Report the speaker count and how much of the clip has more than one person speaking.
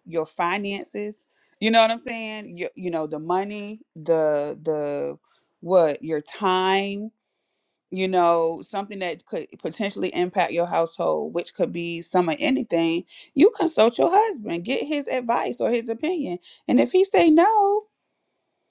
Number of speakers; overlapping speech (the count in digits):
1, no overlap